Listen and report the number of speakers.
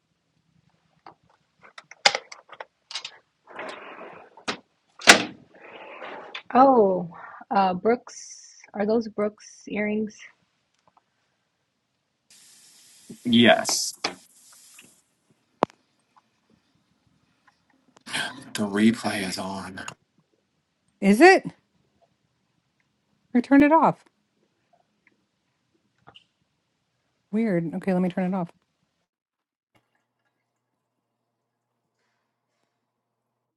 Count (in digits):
3